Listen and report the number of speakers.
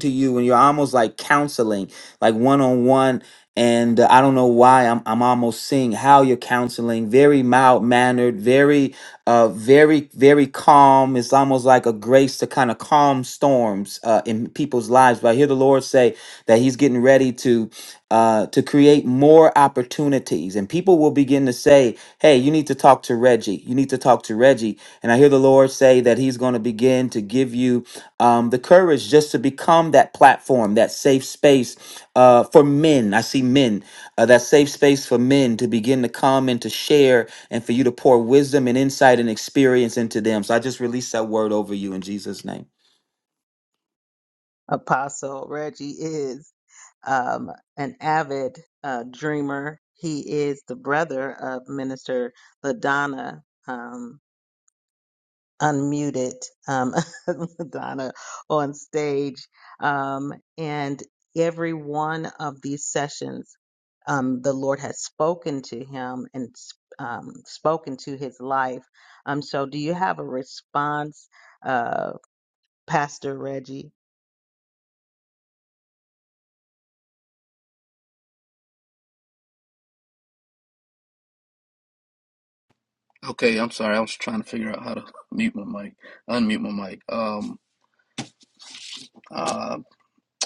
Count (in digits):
3